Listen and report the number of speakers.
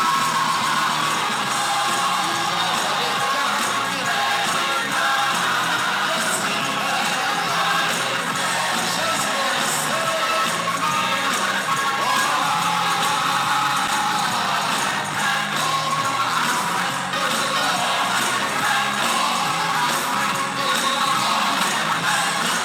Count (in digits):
0